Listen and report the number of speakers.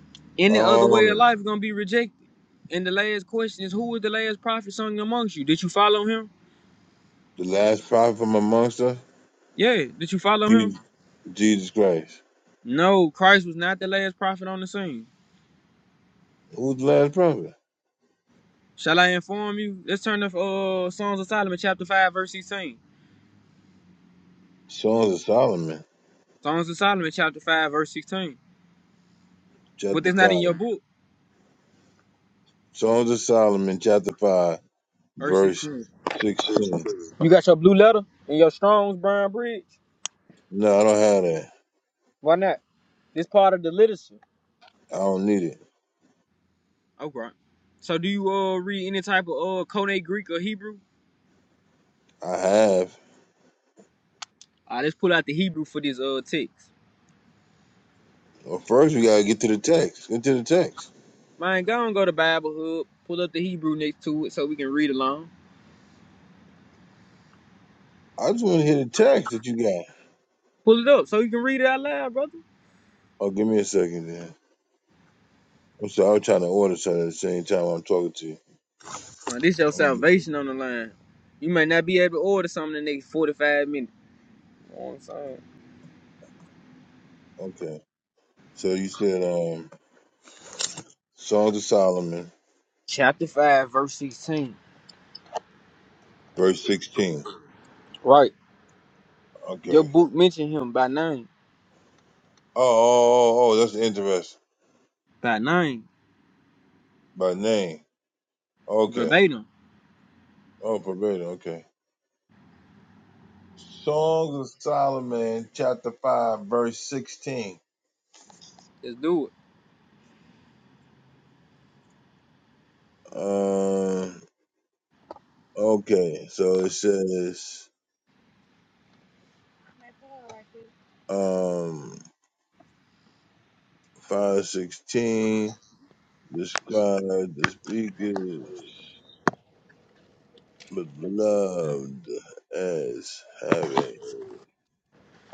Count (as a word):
two